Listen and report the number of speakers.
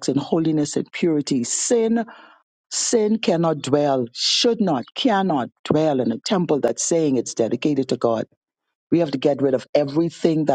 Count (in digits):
1